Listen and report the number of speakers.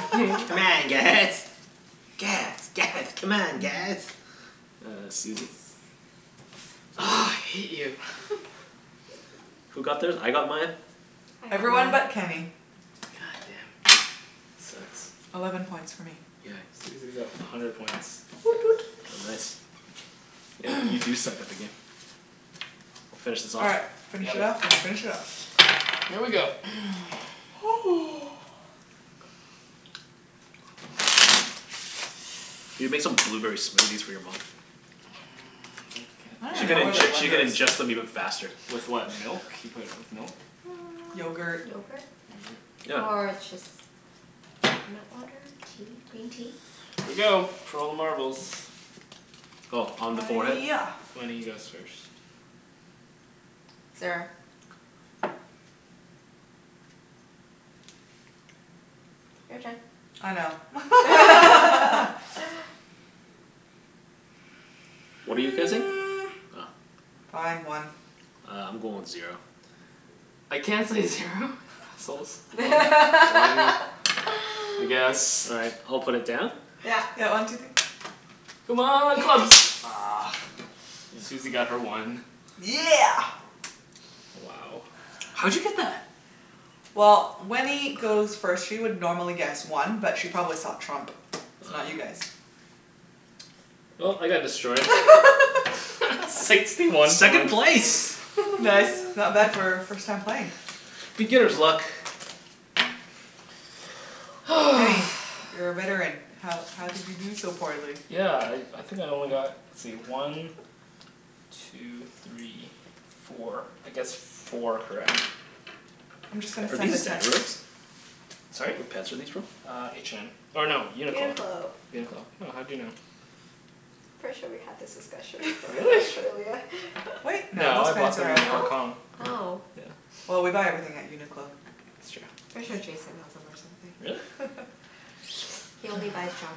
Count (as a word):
four